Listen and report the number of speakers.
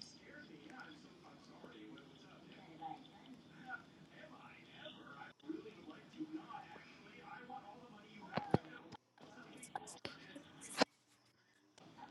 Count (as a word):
zero